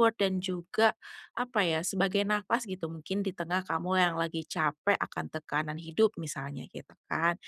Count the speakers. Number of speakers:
one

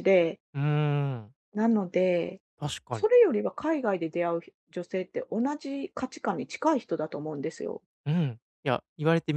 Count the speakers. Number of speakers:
two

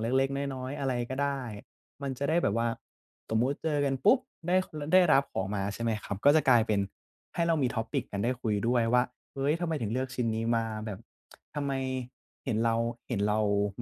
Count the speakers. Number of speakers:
one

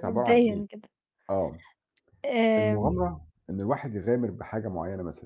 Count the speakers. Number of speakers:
two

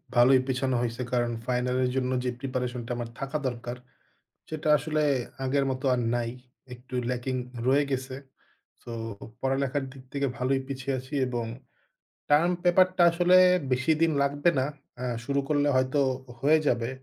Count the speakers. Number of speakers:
one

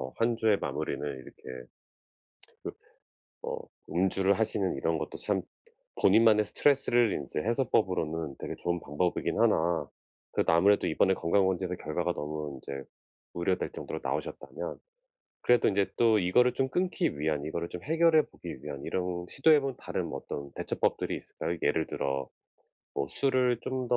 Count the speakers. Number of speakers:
one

